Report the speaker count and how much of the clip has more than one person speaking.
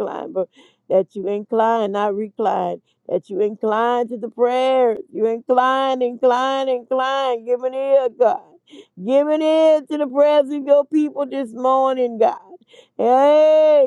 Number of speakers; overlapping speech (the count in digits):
1, no overlap